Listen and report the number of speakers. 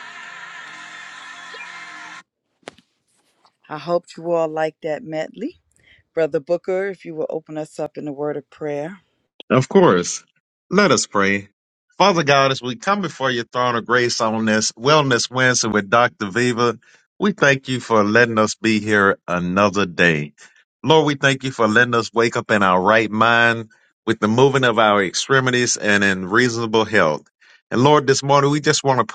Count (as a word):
two